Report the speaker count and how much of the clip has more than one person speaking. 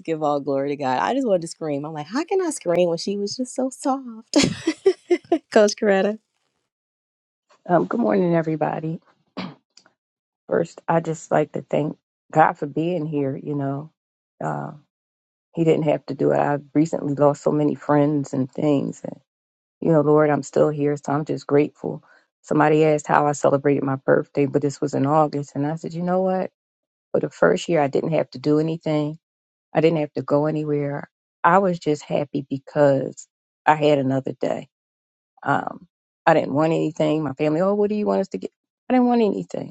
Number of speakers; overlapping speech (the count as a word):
two, no overlap